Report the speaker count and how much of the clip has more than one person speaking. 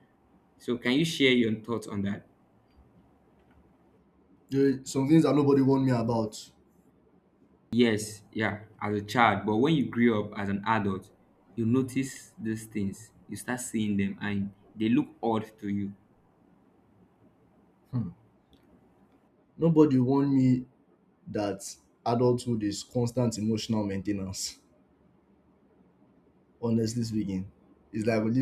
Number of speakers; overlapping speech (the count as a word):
two, no overlap